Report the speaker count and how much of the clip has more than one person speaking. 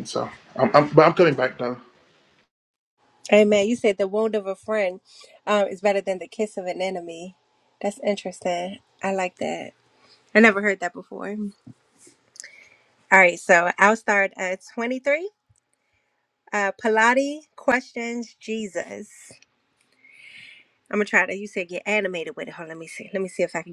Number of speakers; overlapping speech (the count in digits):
2, no overlap